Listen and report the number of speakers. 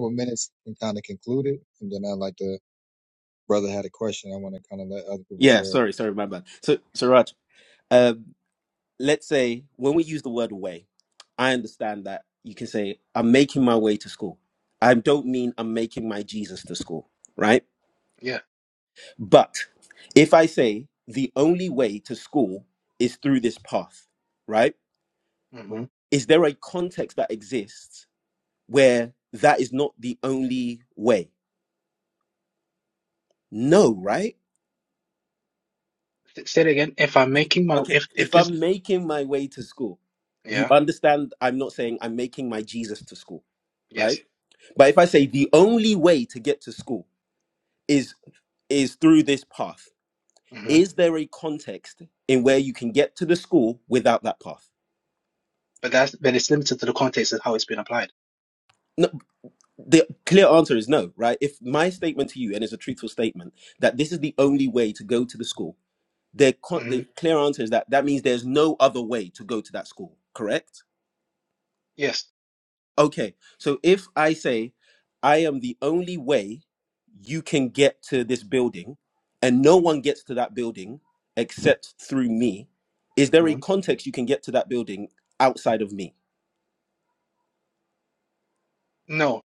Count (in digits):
3